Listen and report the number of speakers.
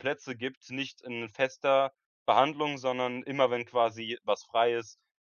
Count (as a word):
one